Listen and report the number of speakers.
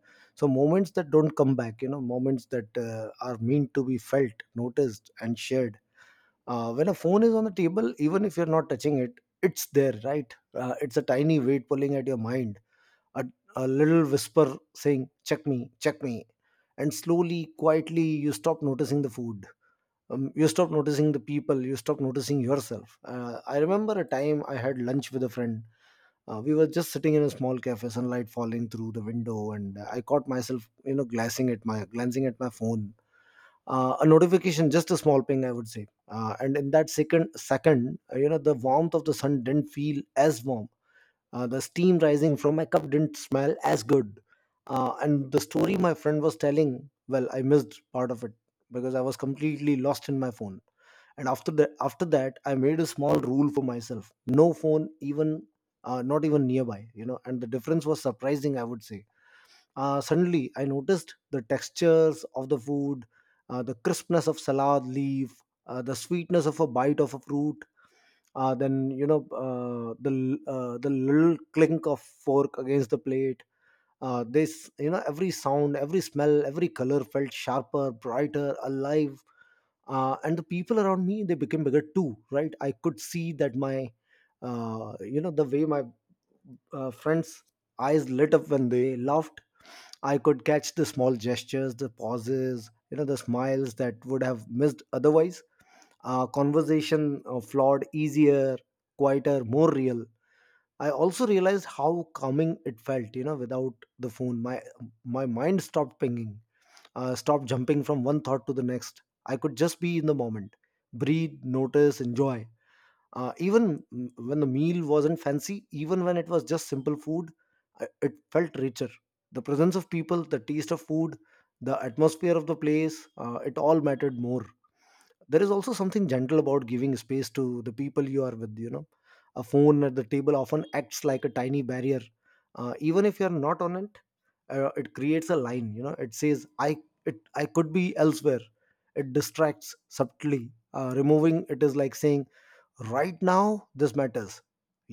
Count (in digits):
1